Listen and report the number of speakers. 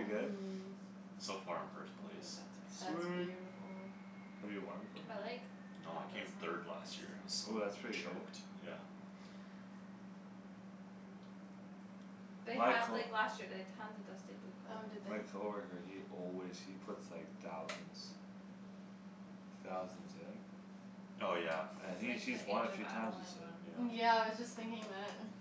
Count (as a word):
four